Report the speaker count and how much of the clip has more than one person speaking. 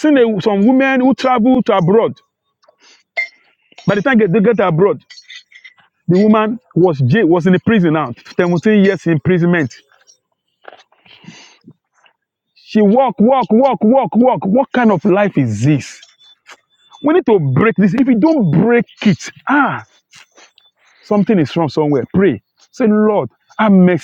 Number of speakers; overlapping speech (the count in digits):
1, no overlap